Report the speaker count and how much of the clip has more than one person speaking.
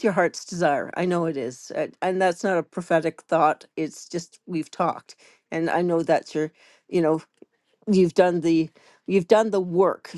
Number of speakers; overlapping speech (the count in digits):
1, no overlap